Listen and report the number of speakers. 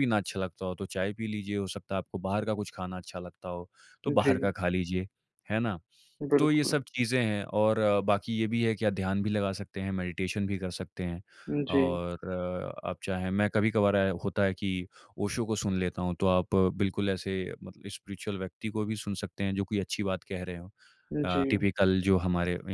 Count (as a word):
two